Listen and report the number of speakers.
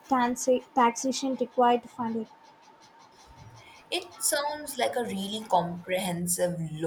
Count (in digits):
2